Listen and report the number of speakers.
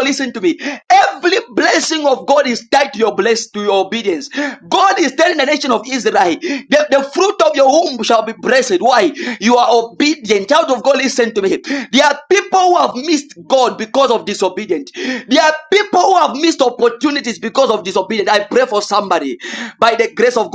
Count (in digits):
1